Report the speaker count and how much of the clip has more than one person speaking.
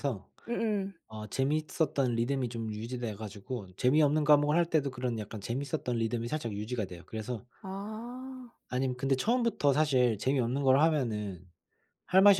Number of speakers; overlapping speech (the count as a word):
two, no overlap